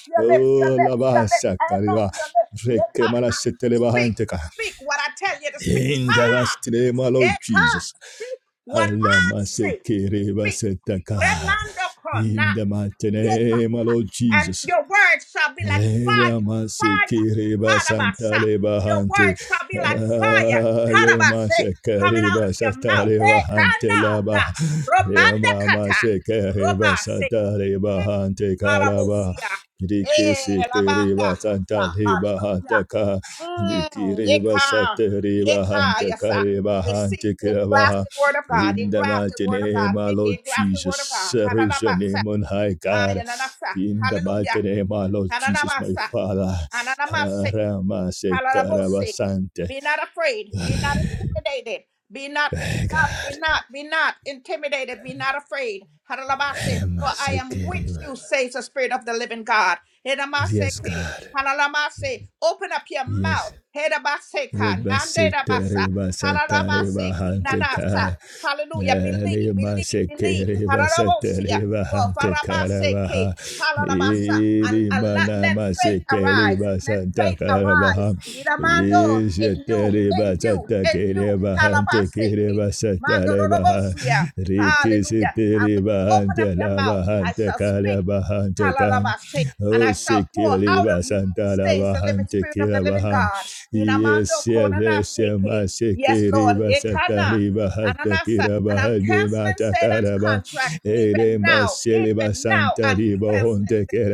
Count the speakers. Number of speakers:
2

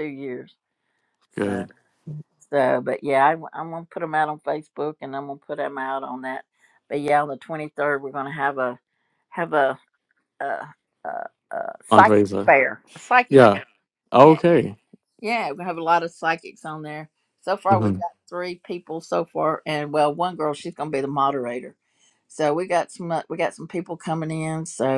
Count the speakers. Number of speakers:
2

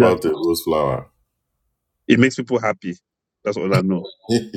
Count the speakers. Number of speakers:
2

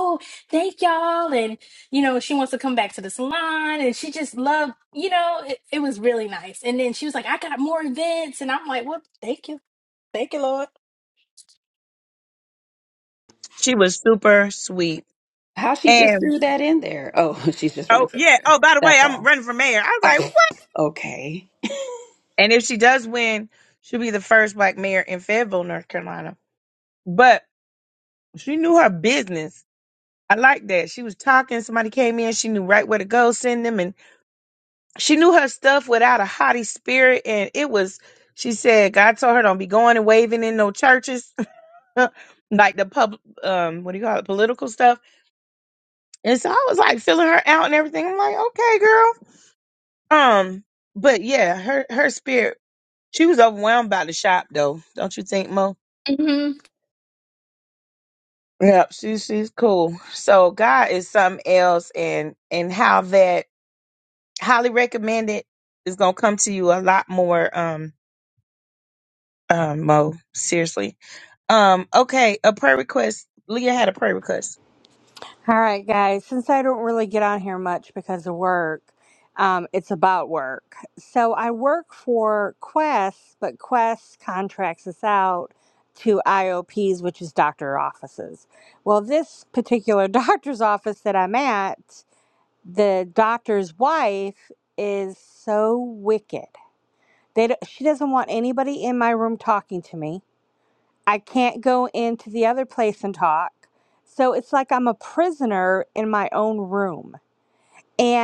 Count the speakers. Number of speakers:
4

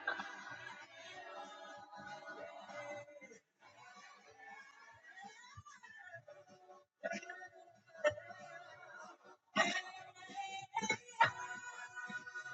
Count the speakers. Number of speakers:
0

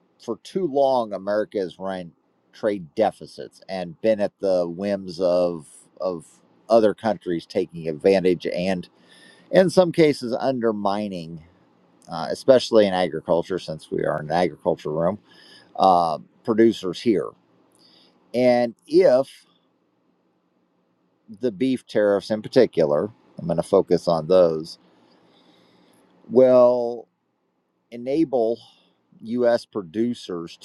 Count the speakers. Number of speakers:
1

